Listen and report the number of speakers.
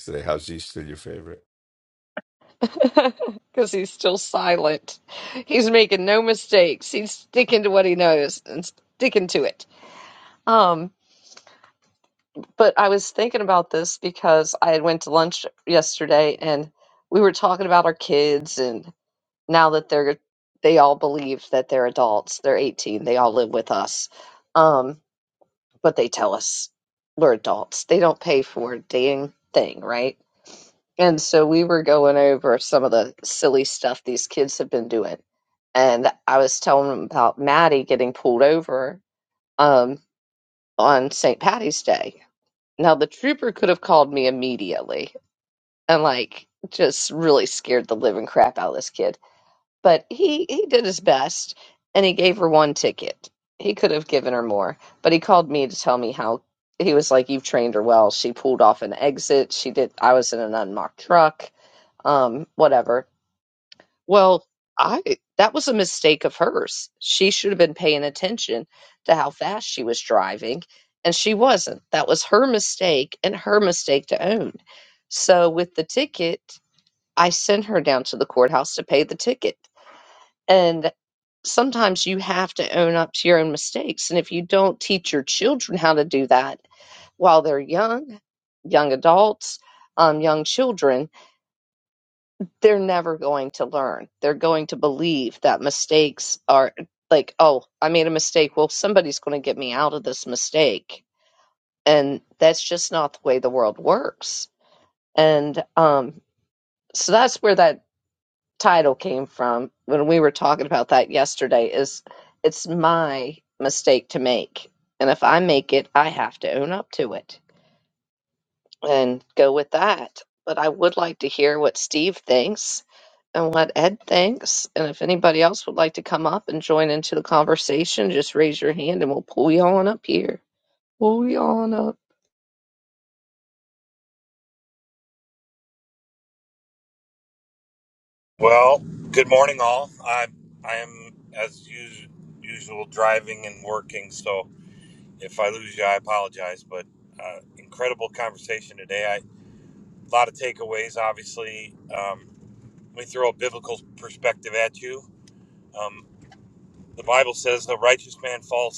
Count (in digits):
3